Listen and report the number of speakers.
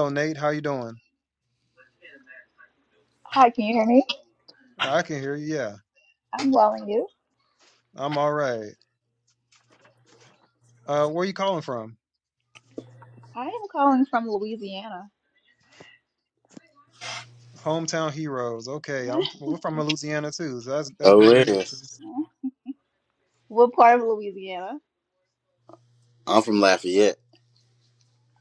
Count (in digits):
3